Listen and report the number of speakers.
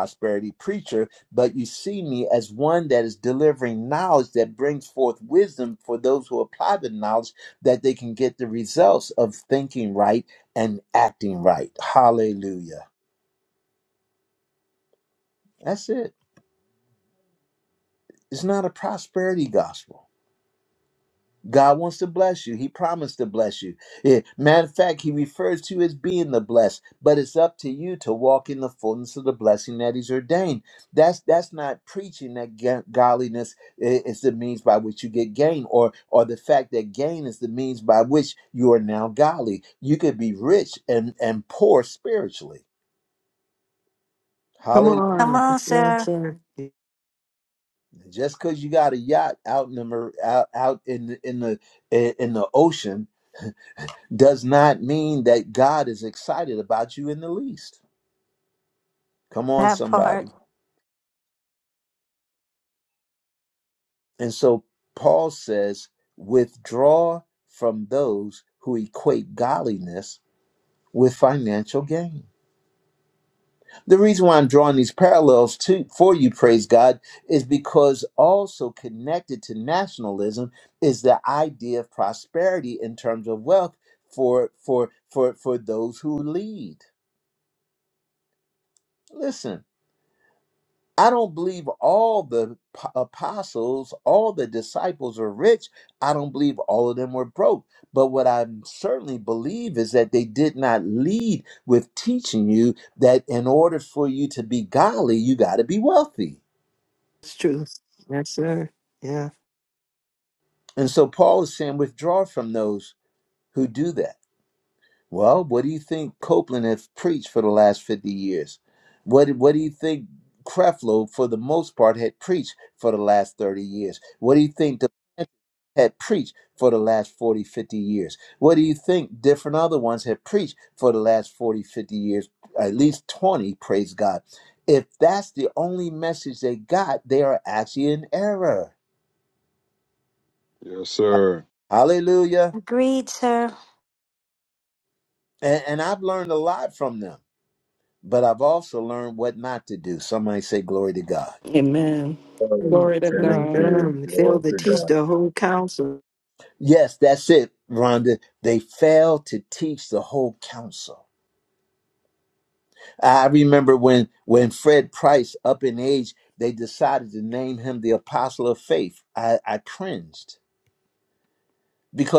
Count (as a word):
five